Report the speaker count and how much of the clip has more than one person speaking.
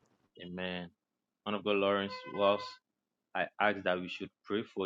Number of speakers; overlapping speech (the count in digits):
1, no overlap